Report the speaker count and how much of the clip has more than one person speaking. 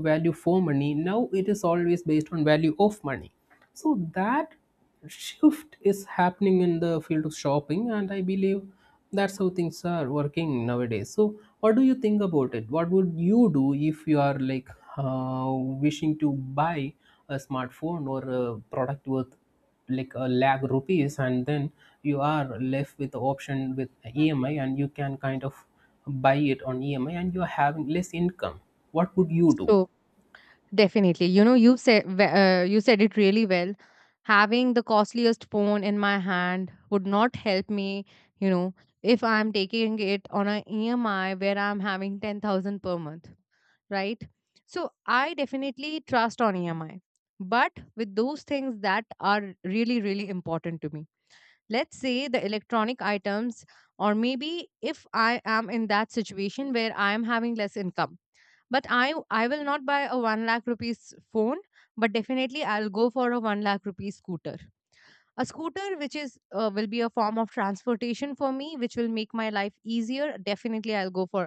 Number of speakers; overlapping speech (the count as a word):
two, under 1%